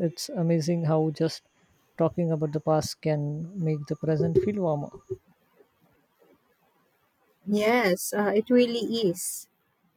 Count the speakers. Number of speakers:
2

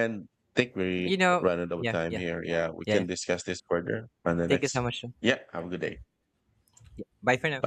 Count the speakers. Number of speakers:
2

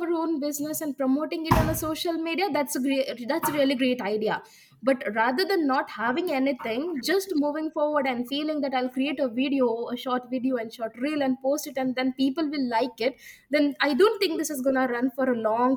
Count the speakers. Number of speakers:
1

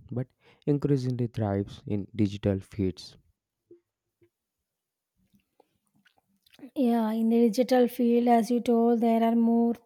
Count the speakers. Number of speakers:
2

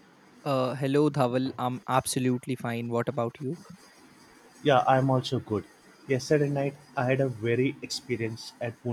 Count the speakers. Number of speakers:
2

